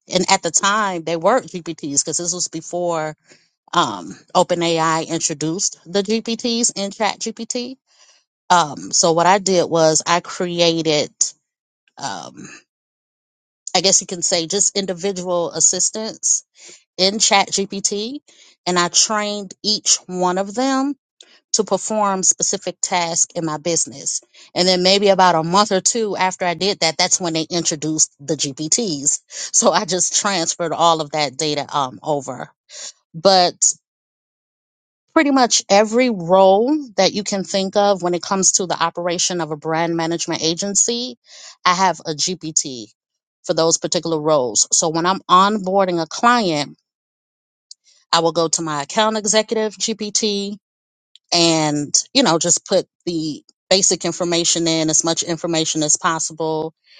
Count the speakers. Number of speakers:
one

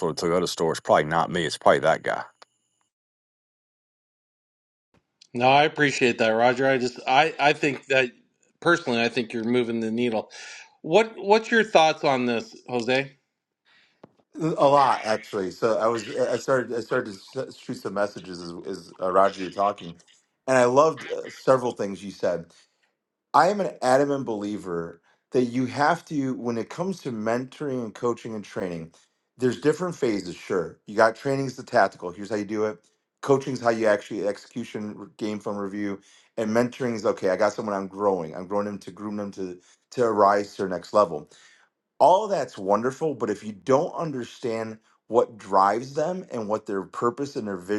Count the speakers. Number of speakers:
three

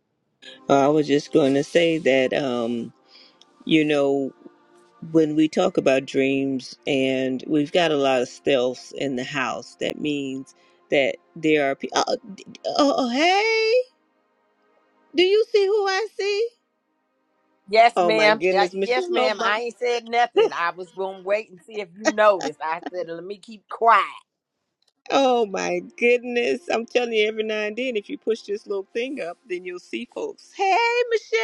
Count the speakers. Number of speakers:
two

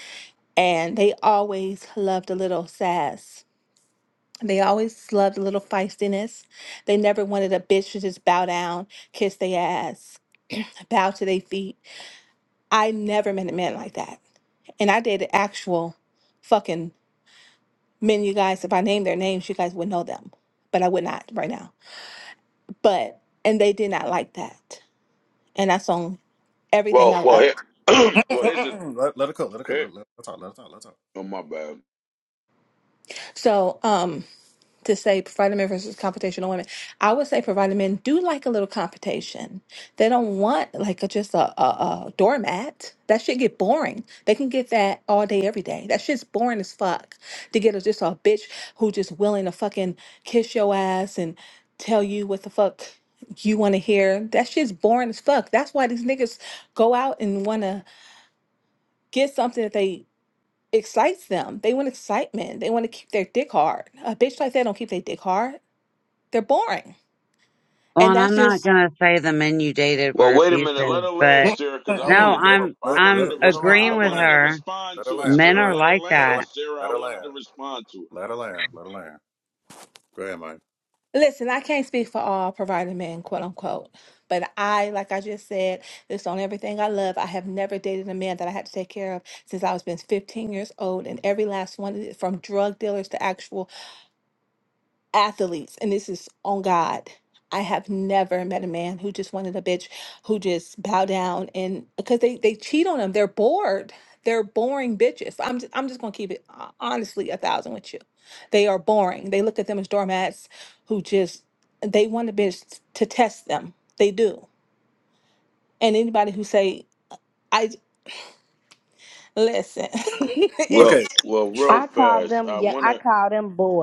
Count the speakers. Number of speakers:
five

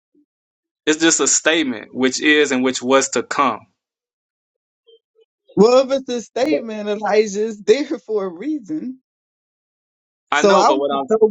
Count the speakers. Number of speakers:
two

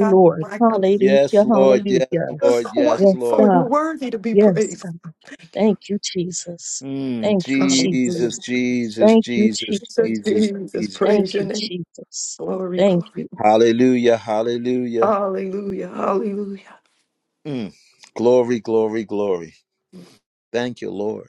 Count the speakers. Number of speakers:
three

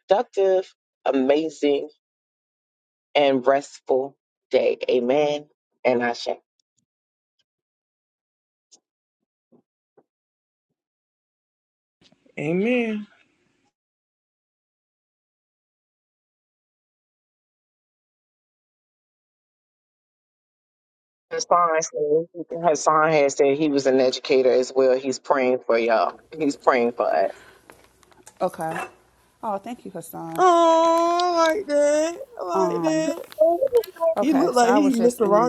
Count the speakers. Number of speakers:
three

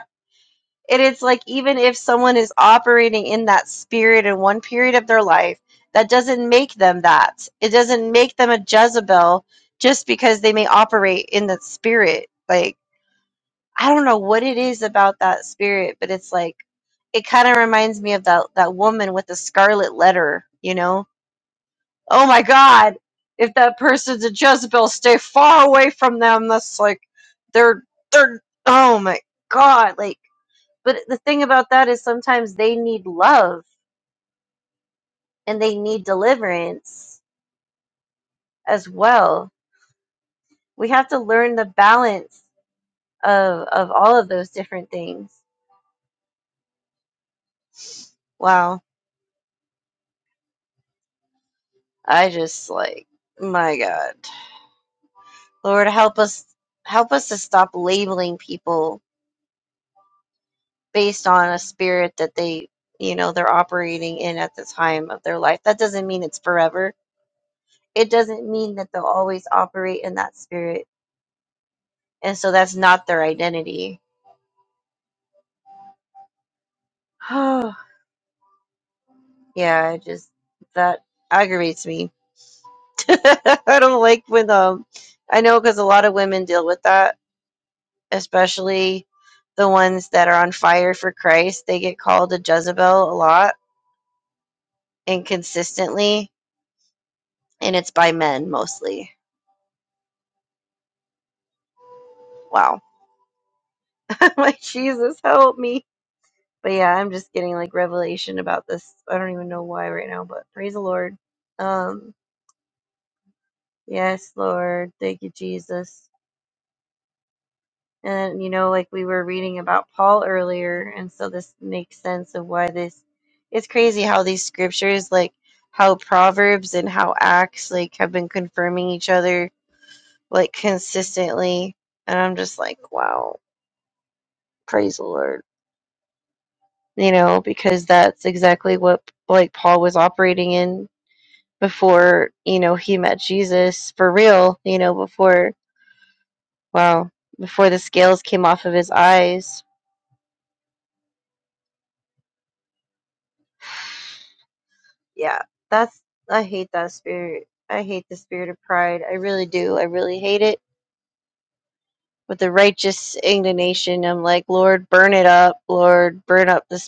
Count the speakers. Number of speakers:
one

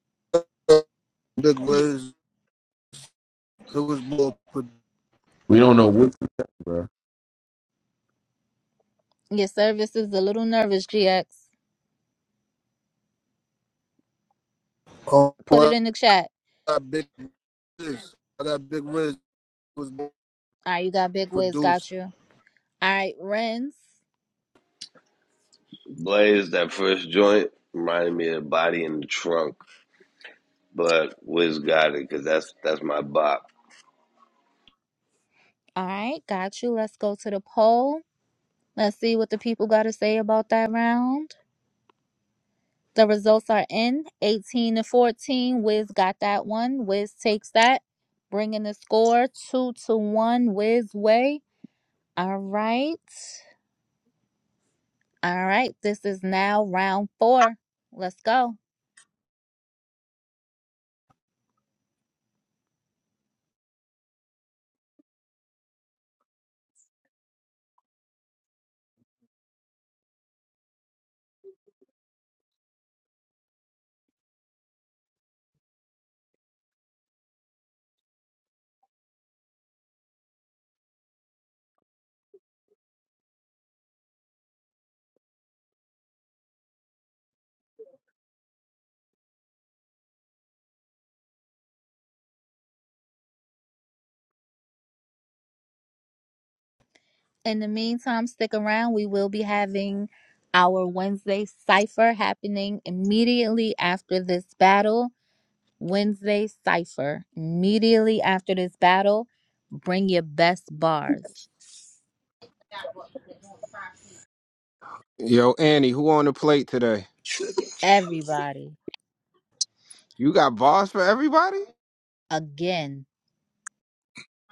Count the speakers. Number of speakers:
five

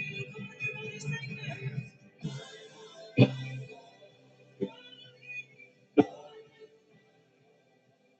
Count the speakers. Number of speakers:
zero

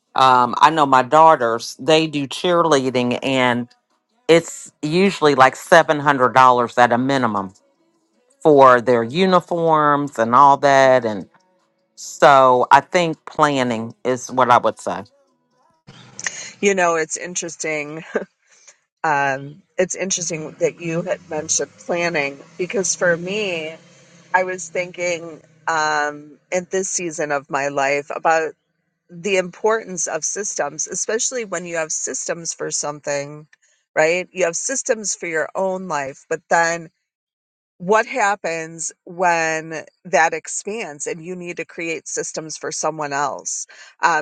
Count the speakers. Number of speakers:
two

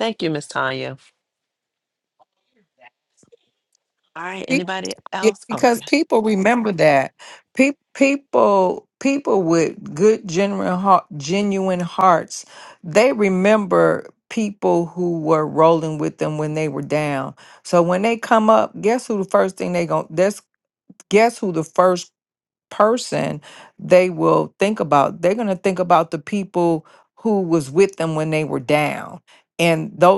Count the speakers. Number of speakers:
two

